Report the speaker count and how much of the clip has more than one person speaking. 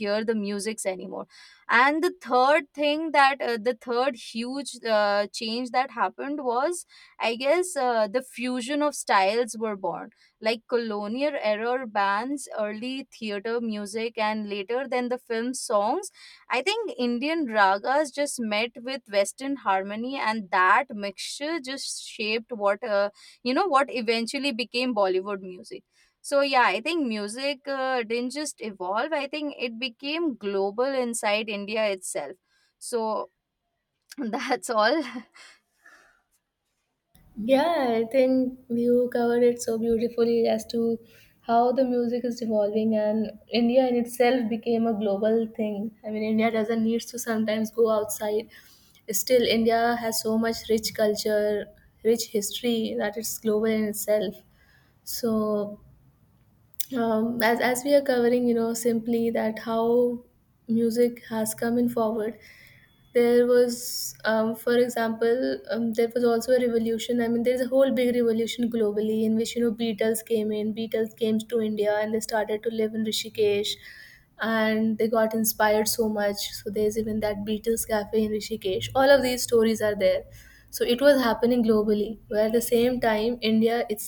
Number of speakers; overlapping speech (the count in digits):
2, no overlap